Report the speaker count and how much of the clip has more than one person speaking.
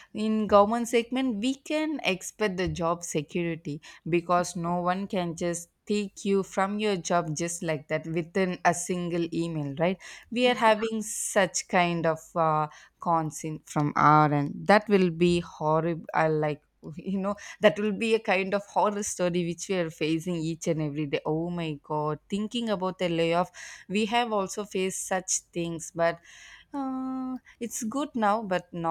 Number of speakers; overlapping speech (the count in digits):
1, no overlap